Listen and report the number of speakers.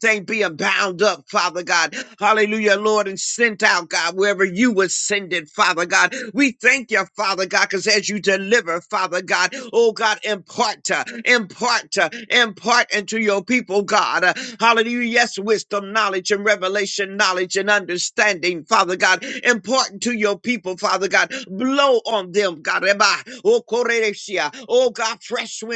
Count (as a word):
one